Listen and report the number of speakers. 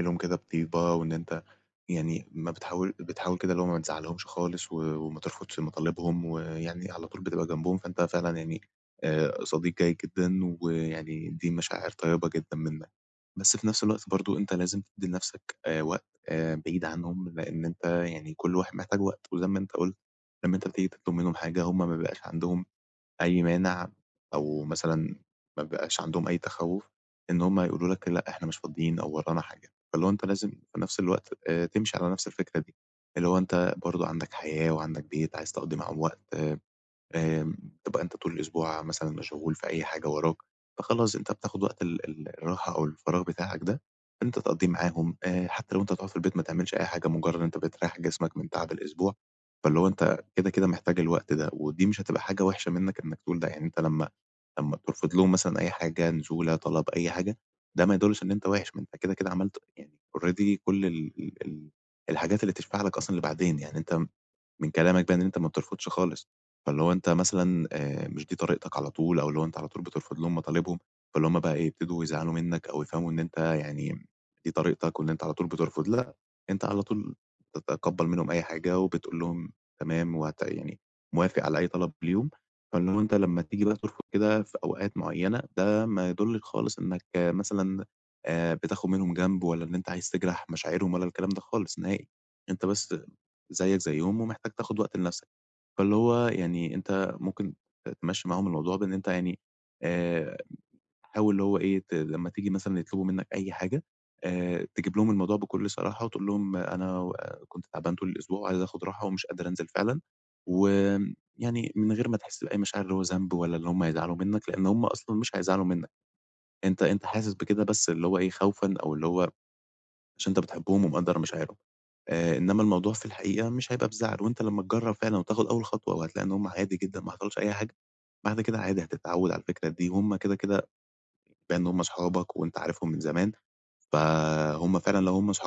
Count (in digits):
1